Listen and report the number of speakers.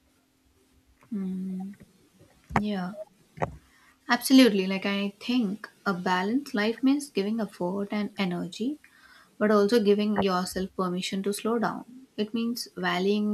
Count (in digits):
1